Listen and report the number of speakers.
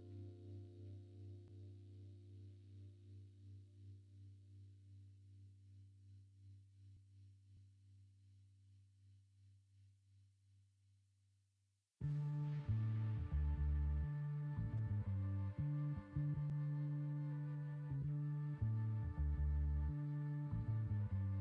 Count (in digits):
0